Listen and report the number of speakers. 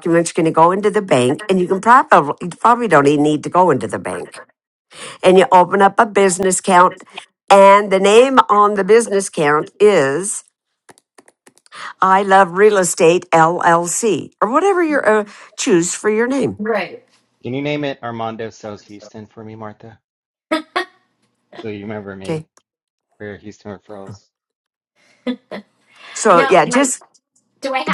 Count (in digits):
3